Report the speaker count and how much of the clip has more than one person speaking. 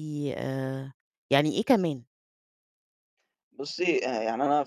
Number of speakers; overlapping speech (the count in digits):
2, no overlap